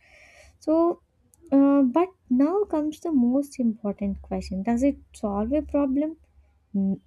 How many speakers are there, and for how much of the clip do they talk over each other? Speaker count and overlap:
one, no overlap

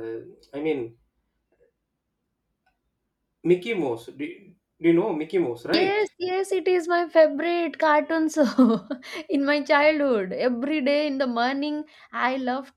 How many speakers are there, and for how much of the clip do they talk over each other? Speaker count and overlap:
two, about 2%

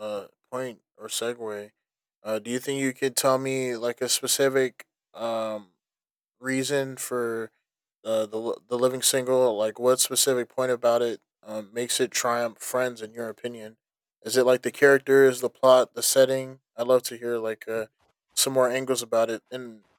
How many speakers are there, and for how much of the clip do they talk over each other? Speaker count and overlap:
one, no overlap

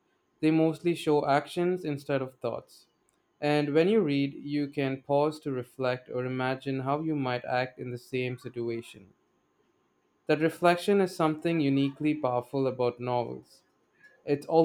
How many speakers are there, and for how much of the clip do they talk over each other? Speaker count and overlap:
one, no overlap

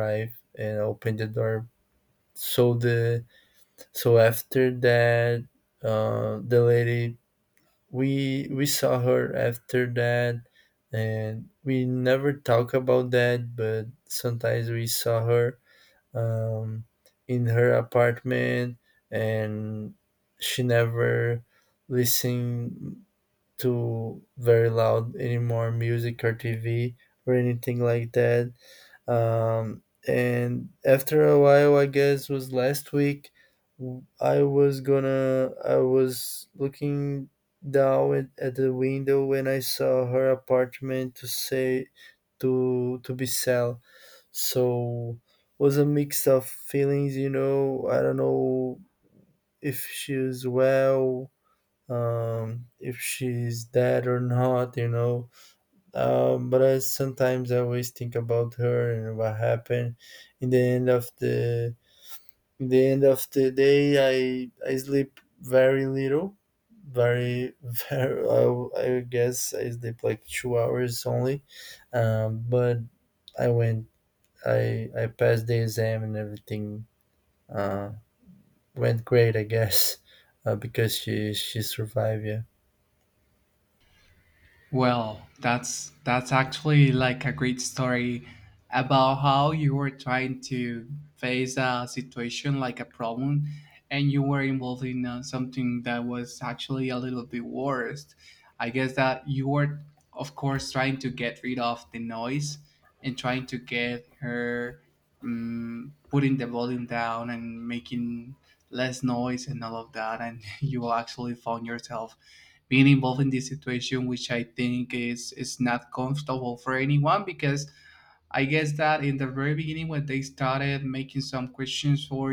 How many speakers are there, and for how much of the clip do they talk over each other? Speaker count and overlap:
two, no overlap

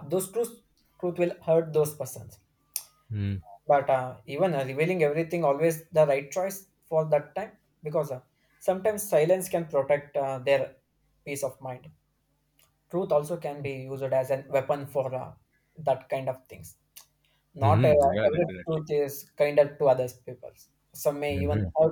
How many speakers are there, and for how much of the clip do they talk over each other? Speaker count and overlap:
two, about 7%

